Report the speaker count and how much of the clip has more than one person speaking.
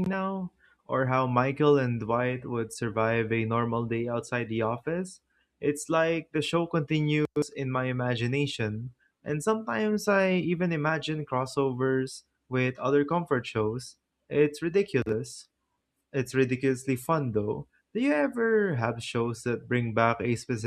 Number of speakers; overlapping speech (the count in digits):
1, no overlap